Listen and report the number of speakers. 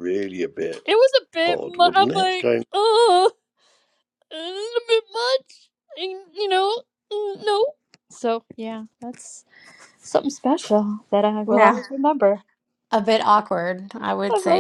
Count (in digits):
3